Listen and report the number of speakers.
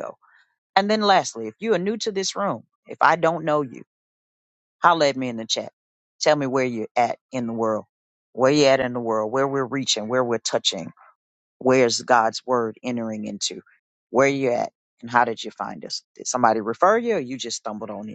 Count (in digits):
1